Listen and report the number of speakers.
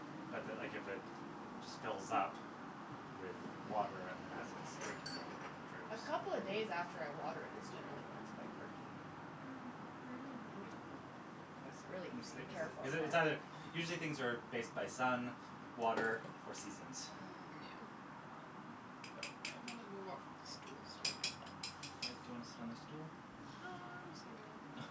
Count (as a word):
three